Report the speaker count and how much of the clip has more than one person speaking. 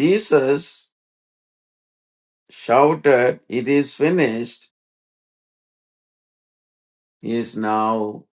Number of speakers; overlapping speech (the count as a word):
one, no overlap